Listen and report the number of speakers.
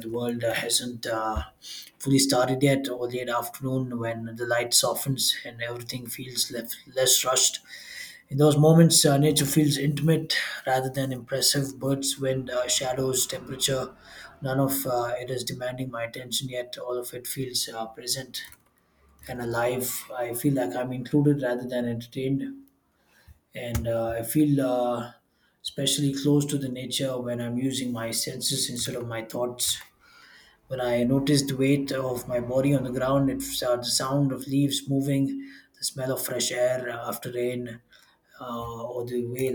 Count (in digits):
1